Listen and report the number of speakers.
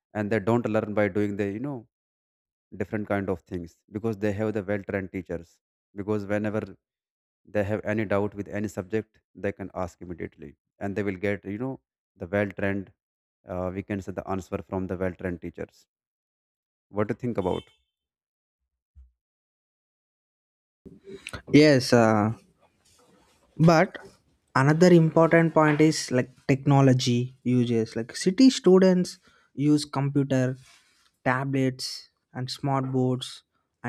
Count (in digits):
2